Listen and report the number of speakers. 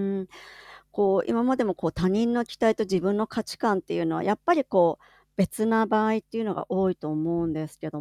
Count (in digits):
1